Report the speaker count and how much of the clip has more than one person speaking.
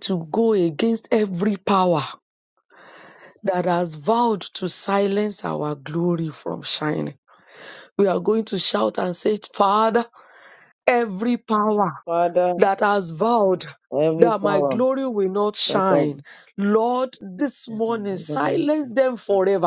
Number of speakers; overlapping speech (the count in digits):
2, about 5%